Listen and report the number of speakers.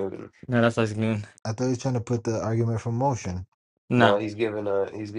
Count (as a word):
three